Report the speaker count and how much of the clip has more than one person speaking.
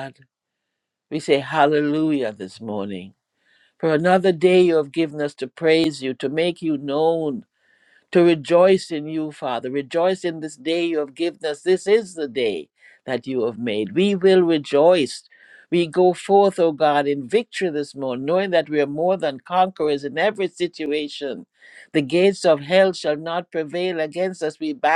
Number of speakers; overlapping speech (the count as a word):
one, no overlap